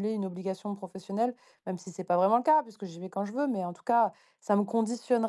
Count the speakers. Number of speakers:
1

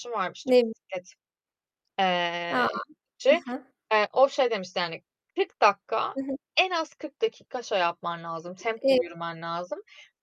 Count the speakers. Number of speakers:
2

